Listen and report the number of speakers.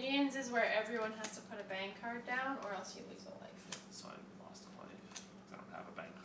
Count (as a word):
two